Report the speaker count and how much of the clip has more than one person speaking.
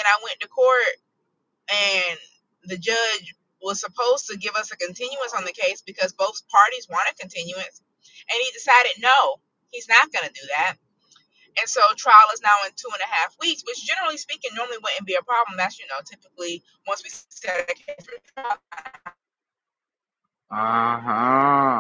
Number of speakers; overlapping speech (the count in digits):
2, no overlap